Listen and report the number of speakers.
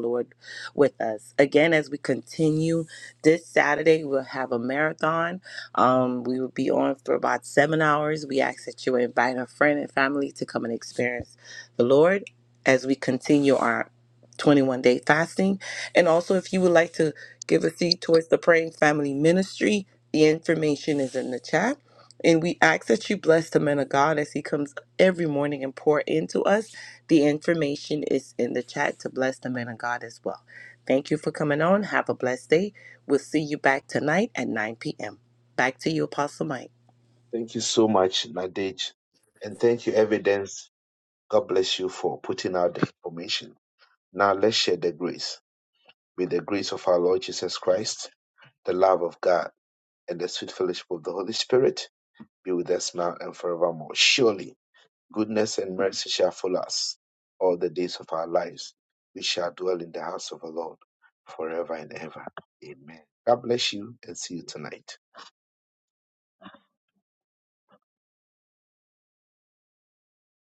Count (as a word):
two